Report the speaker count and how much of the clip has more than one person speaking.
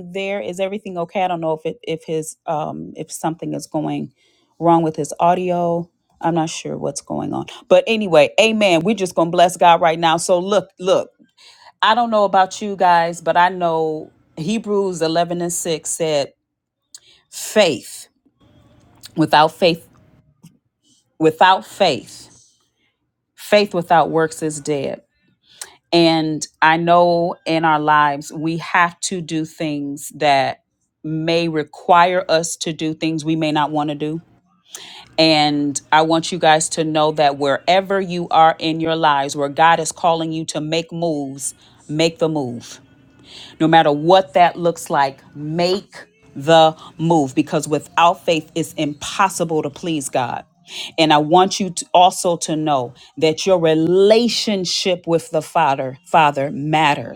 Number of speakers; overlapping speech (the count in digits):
1, no overlap